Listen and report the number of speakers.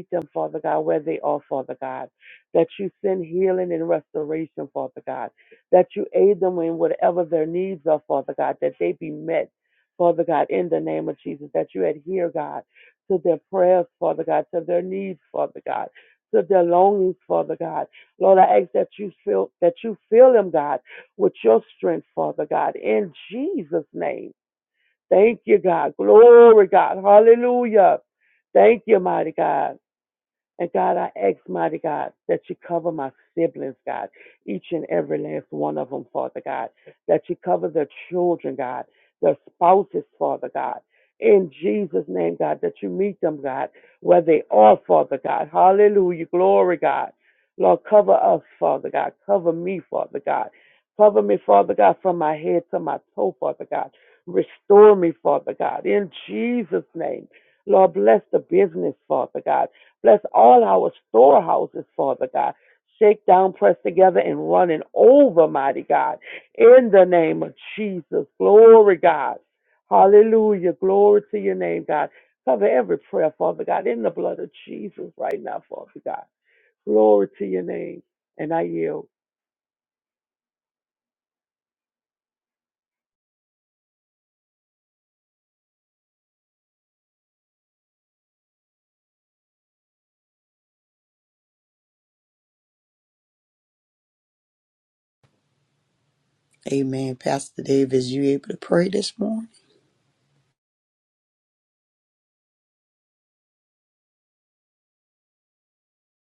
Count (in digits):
2